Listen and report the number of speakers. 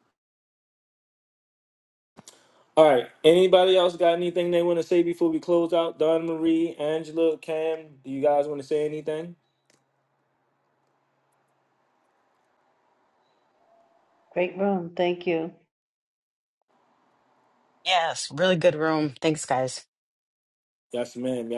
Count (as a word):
three